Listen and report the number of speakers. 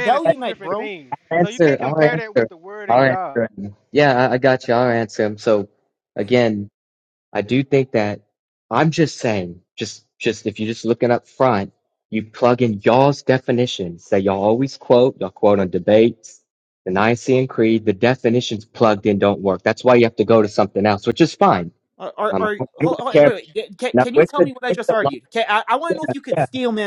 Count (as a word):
three